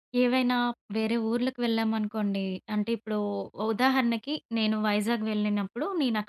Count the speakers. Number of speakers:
one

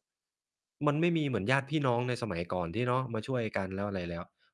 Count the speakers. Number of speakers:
one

